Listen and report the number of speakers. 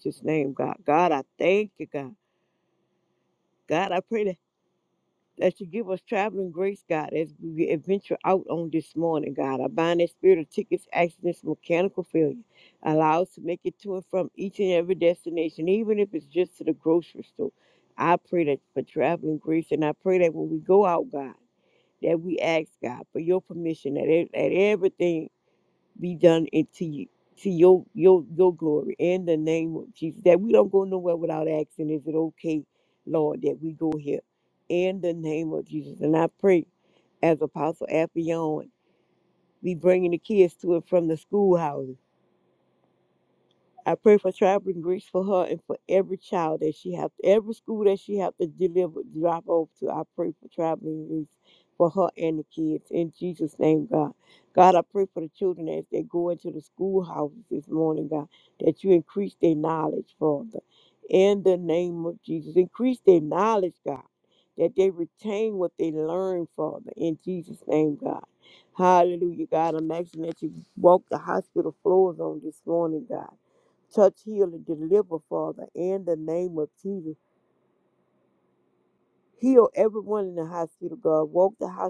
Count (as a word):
one